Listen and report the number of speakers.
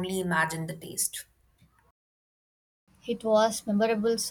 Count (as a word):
two